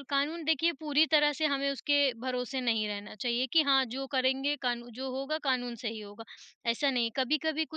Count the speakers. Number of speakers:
1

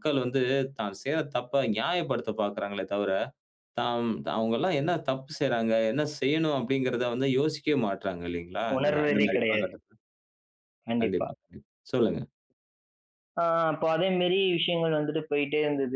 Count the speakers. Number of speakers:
2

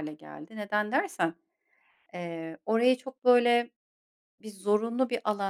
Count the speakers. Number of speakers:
1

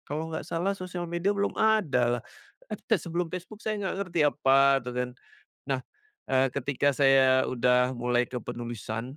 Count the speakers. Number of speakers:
1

